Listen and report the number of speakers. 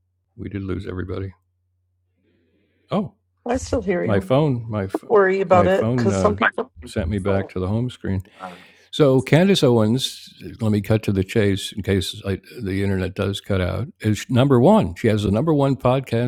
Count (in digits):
2